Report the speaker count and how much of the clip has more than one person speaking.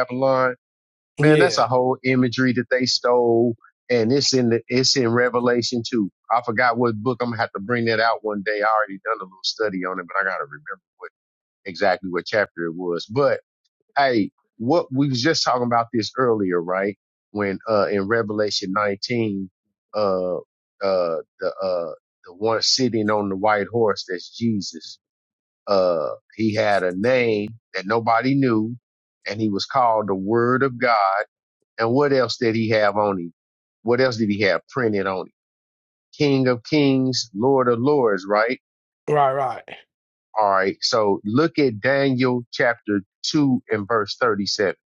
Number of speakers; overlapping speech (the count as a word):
two, about 1%